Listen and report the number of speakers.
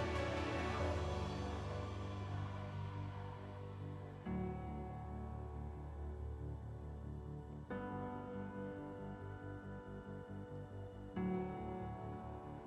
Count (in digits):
0